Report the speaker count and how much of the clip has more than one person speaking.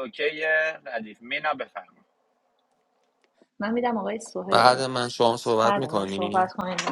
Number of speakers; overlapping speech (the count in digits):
3, about 16%